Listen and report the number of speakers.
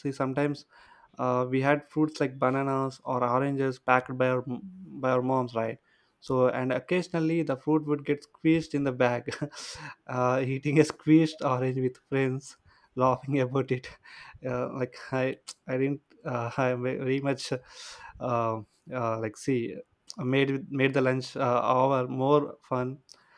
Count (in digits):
1